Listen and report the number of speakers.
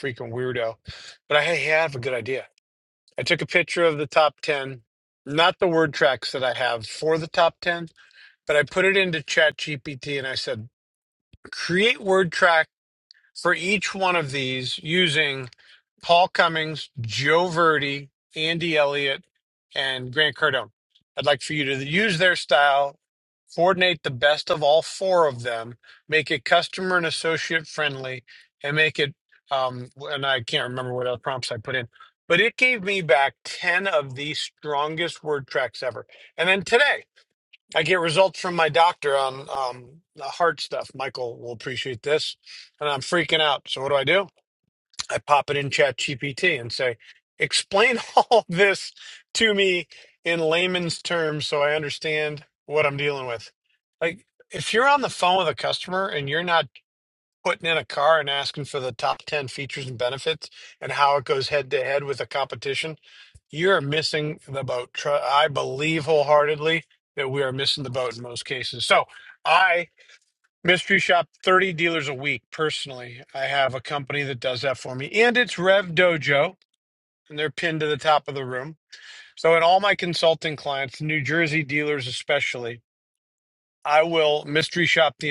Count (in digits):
1